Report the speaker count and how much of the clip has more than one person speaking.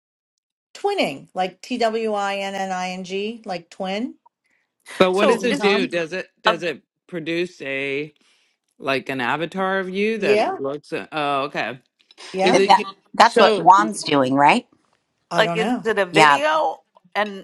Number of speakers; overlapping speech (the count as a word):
four, about 17%